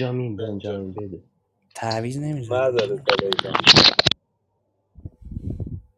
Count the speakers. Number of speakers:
three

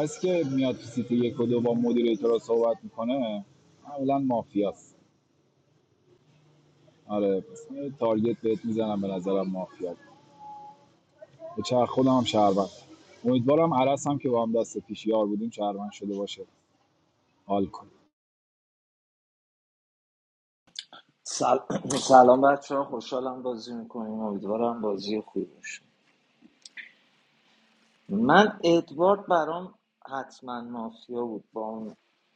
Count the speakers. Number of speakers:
two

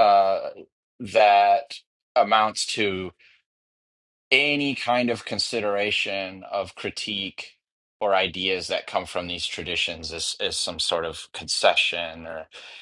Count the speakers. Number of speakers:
one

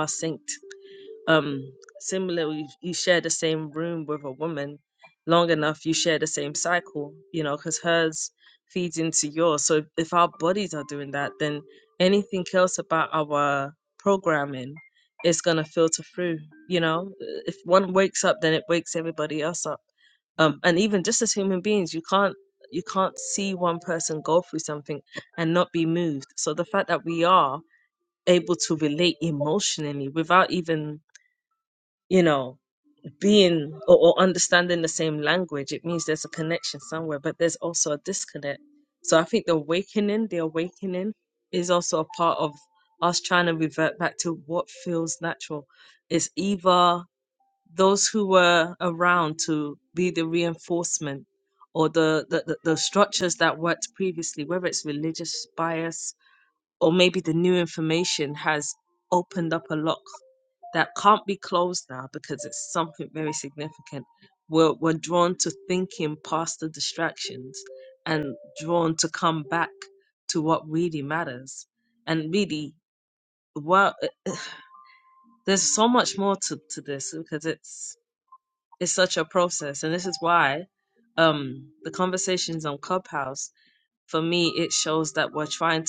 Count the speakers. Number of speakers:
one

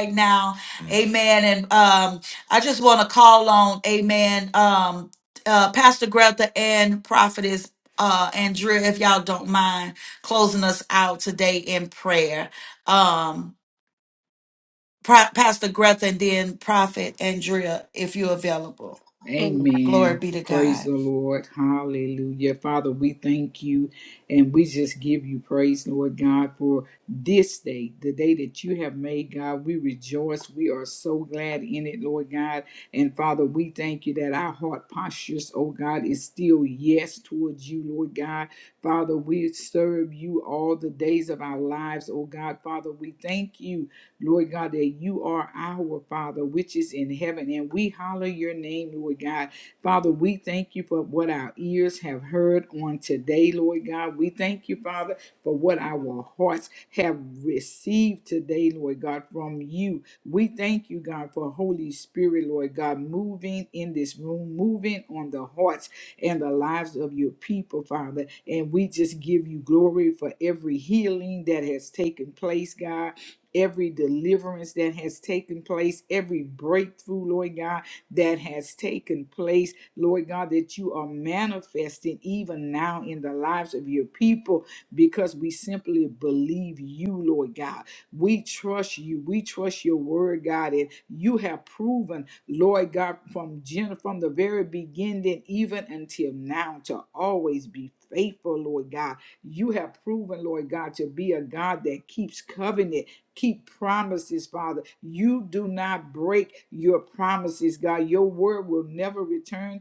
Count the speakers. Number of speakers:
two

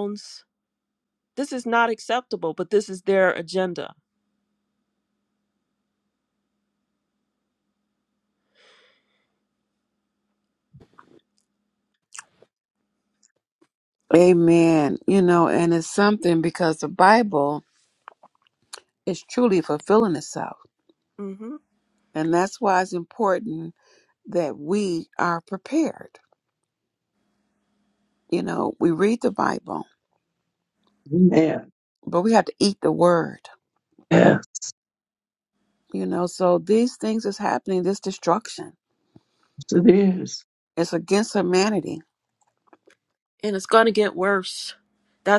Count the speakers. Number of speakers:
three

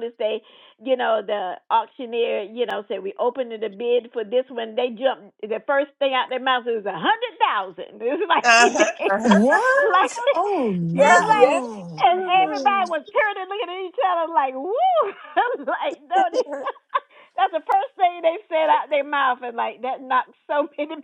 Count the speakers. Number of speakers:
three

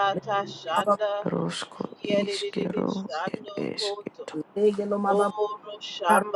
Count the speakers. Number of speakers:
three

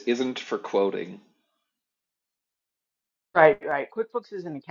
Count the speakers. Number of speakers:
two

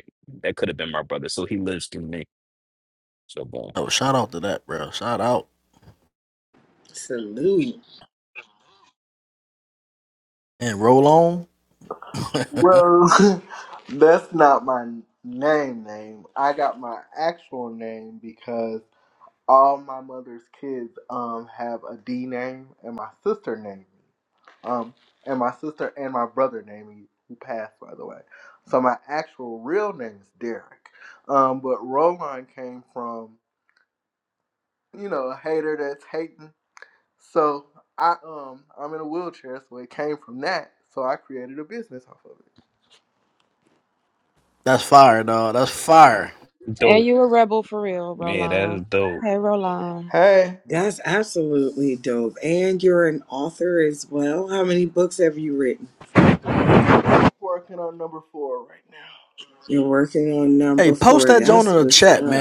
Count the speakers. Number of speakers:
five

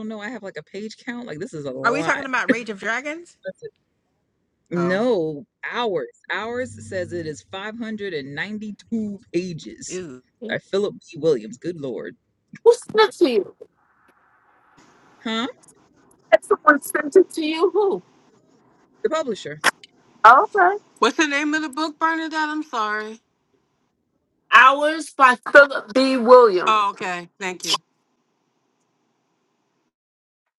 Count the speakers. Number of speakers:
four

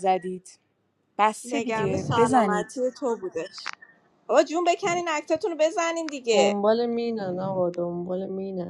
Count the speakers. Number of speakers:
three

